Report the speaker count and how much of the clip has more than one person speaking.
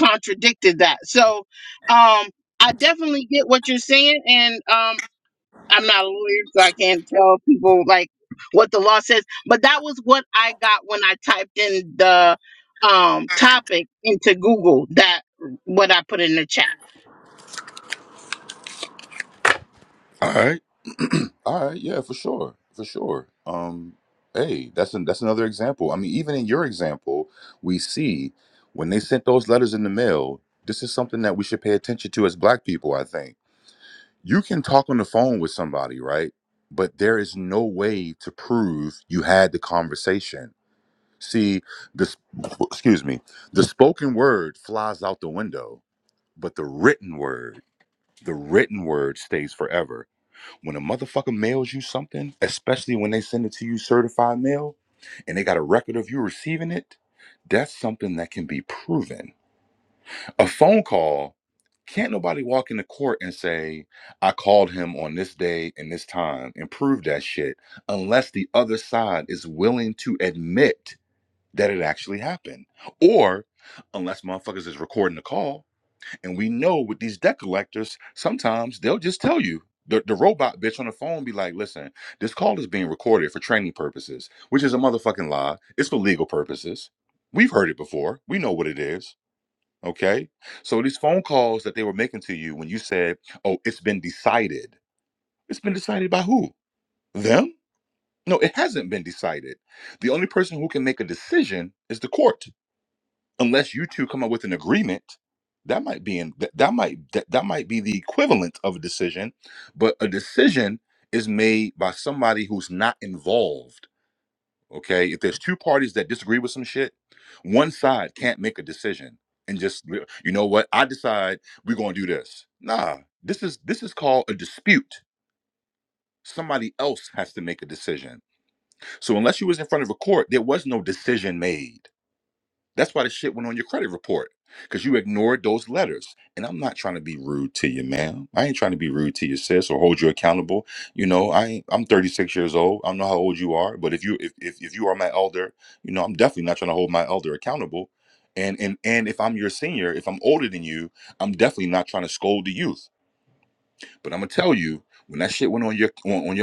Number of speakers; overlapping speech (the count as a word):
two, no overlap